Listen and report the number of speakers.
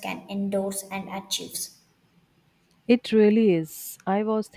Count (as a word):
two